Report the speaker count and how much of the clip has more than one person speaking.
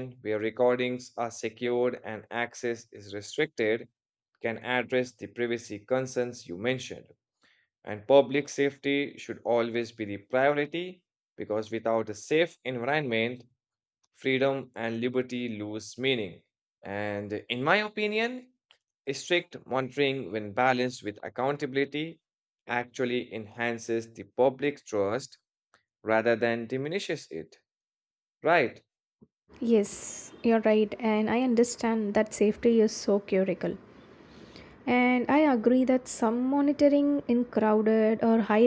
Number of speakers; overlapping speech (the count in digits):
2, no overlap